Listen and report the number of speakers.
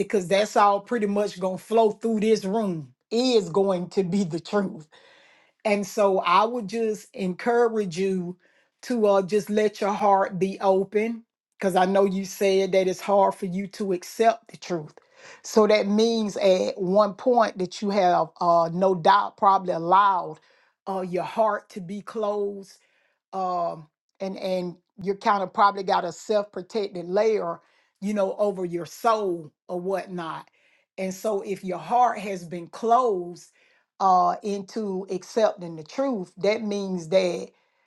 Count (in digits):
1